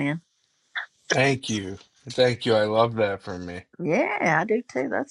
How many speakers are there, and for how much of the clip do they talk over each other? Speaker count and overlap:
2, no overlap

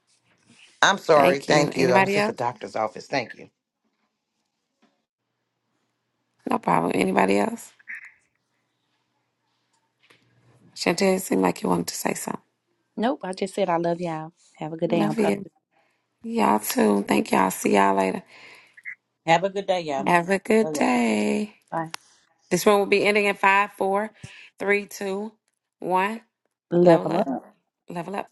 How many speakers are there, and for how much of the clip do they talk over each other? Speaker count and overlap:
4, about 9%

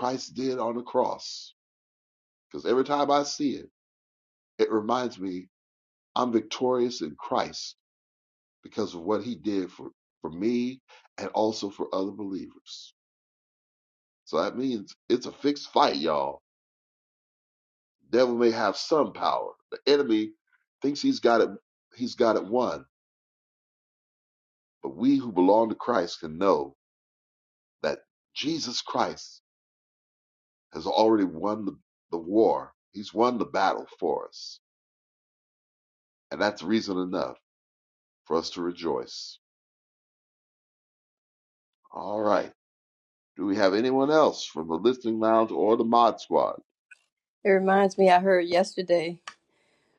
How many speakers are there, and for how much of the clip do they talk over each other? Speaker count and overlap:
2, no overlap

